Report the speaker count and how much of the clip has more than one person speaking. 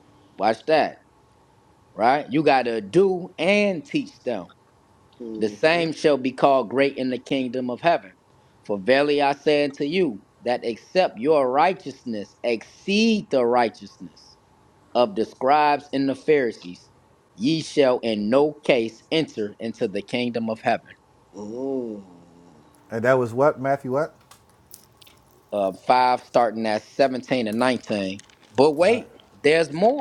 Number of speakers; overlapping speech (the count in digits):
3, about 2%